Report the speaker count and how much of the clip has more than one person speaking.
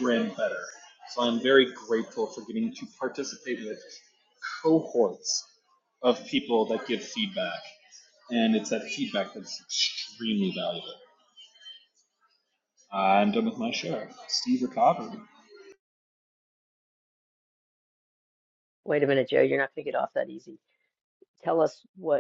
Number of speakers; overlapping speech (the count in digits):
2, no overlap